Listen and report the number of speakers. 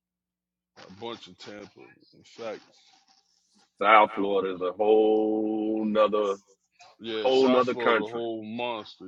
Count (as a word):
two